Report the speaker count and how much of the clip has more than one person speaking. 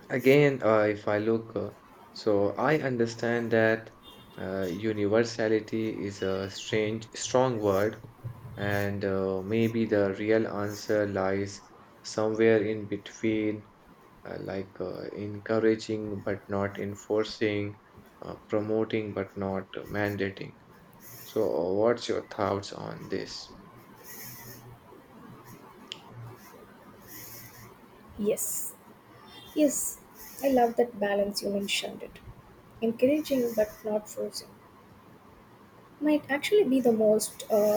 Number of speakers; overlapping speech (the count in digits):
2, no overlap